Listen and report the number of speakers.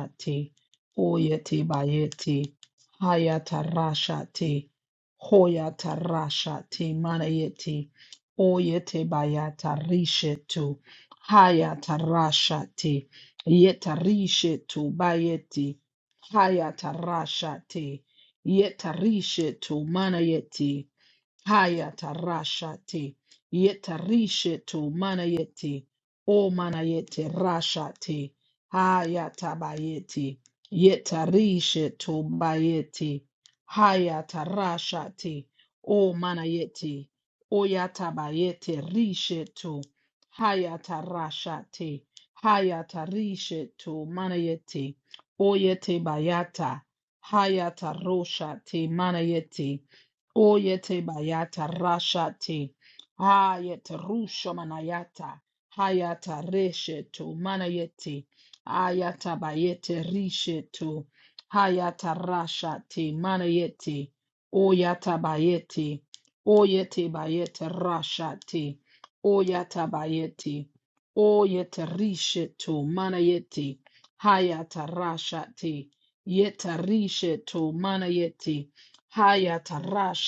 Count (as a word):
one